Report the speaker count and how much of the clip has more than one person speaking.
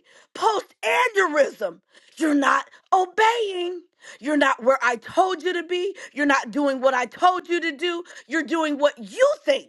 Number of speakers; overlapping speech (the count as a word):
one, no overlap